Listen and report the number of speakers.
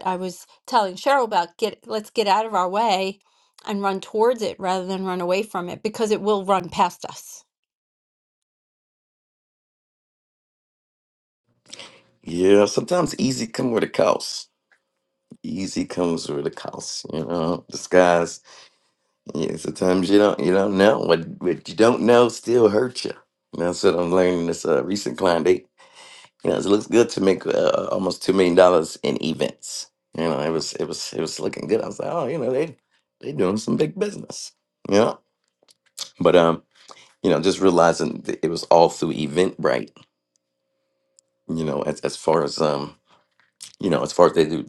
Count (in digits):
2